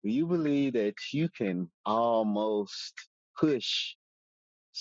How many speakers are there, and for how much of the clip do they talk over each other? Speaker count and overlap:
1, no overlap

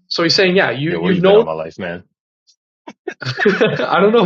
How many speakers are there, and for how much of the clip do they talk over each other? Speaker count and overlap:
2, about 14%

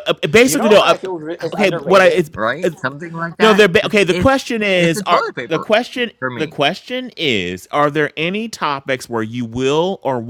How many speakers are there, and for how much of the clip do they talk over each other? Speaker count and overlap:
3, about 35%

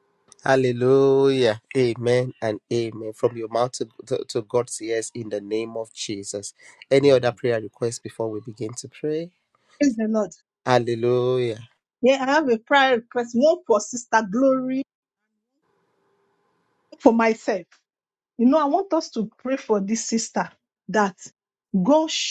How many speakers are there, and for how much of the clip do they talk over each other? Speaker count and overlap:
2, no overlap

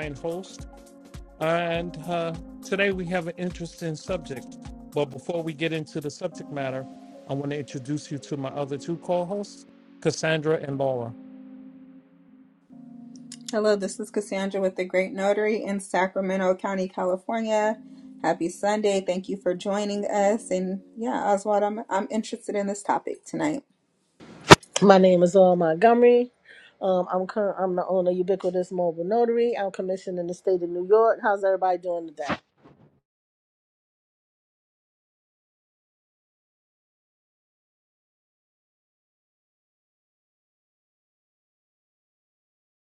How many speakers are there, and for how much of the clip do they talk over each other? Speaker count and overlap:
3, no overlap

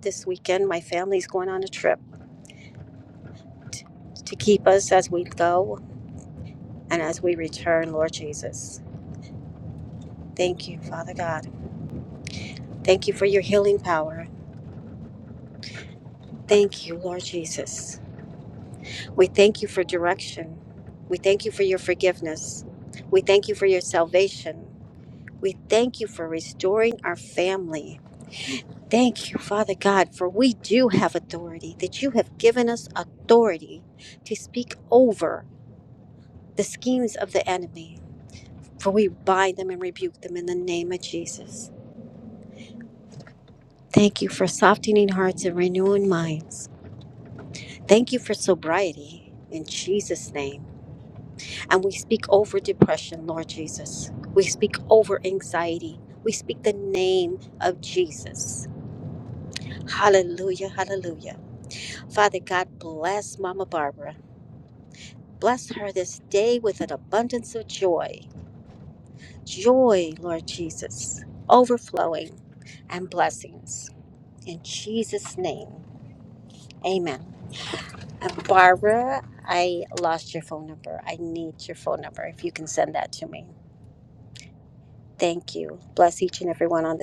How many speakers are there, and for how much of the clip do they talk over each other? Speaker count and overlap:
1, no overlap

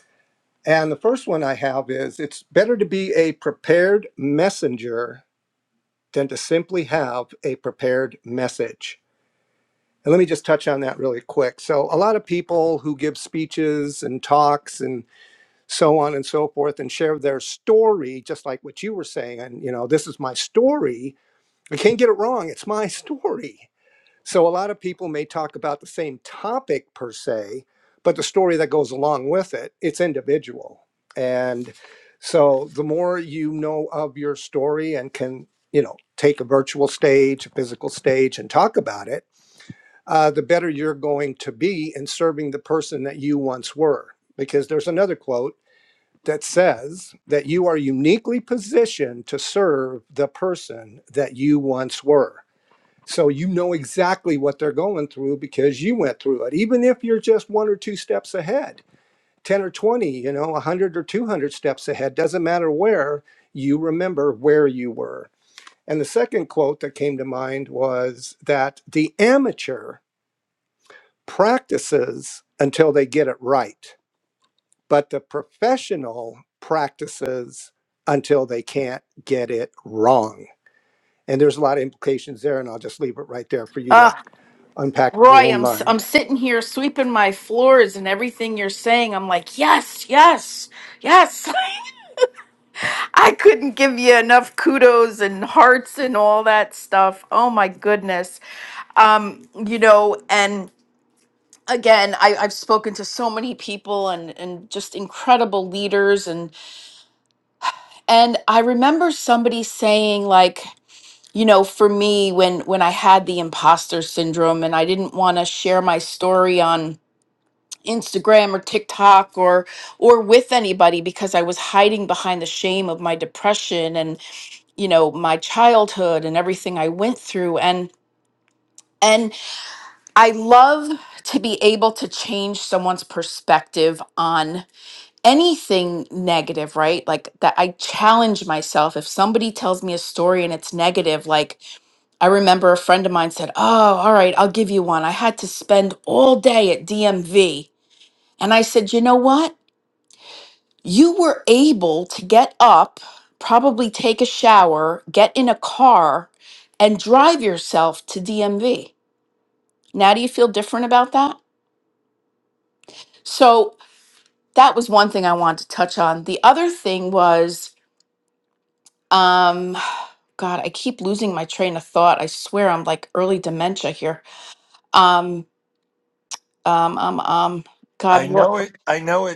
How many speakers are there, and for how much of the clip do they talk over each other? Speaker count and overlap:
3, about 1%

